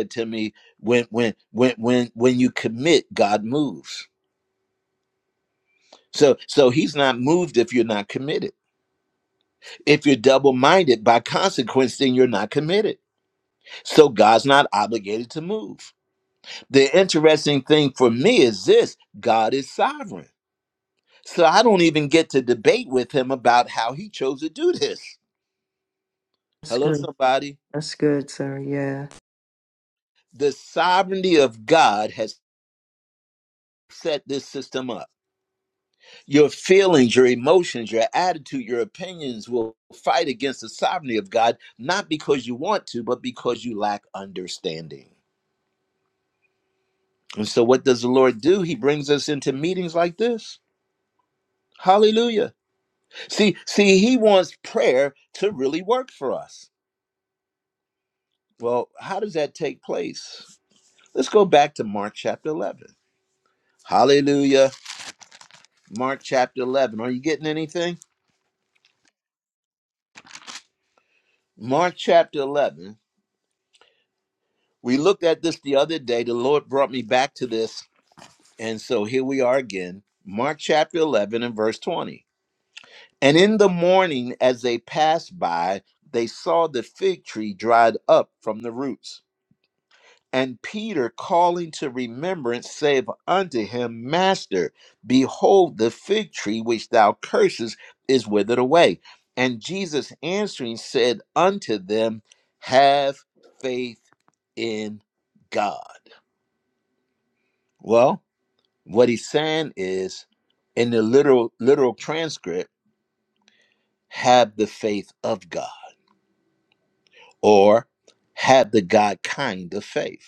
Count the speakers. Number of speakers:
two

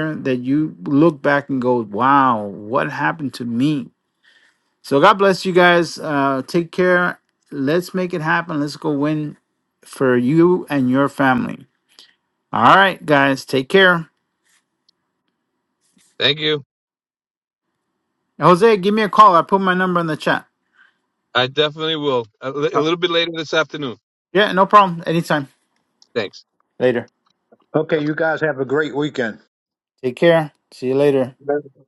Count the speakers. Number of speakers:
three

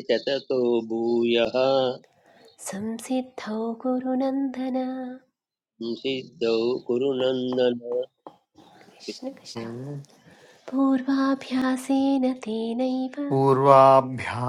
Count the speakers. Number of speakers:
three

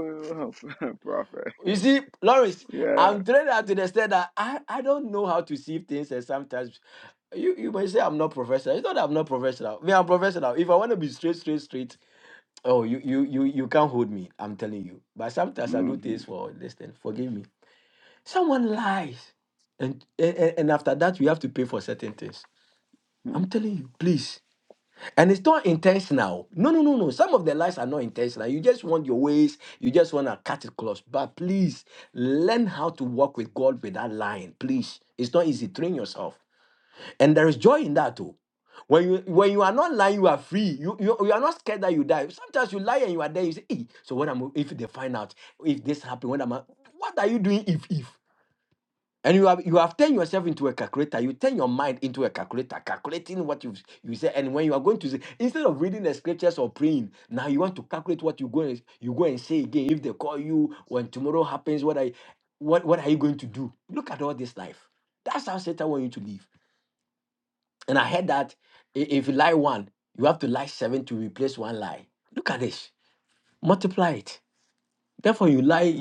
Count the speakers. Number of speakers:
two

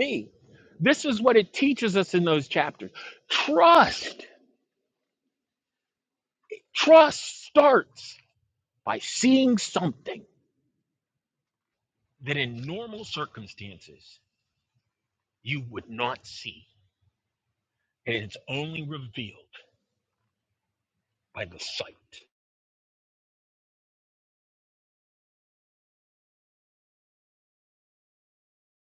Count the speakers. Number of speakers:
one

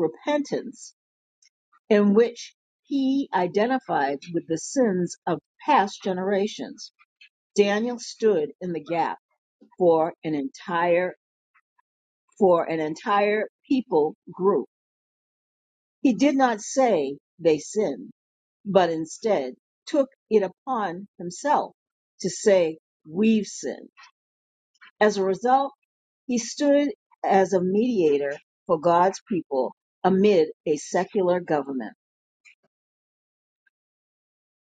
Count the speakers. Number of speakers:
one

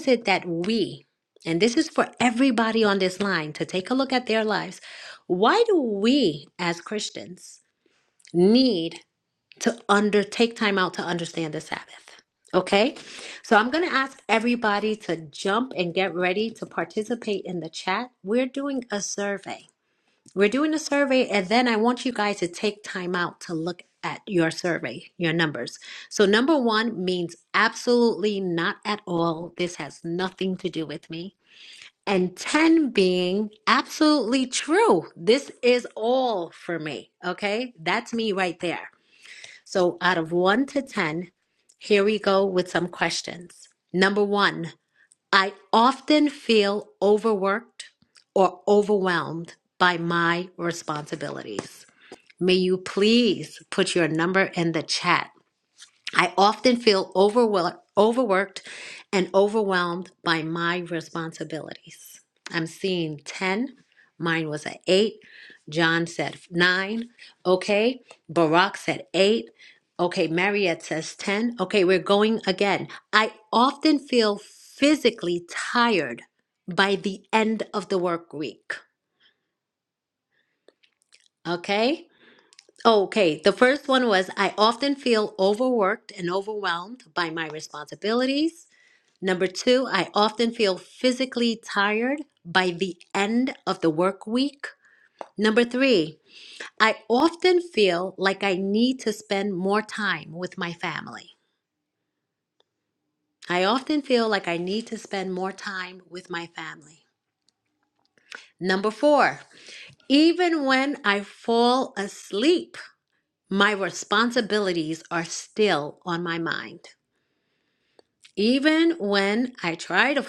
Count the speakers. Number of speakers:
one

